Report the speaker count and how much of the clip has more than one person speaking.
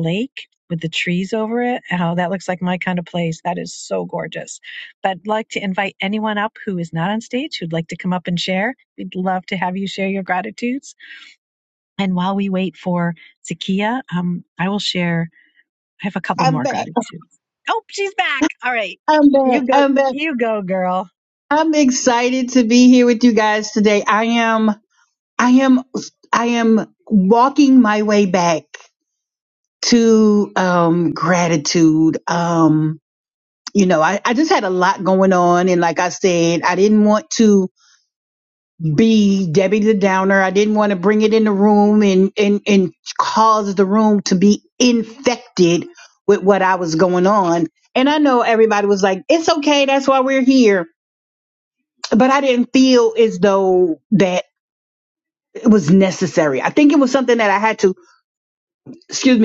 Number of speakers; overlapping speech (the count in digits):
2, about 2%